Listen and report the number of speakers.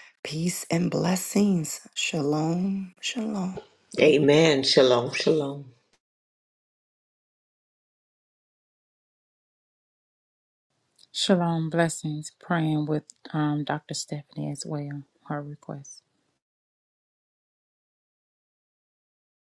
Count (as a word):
three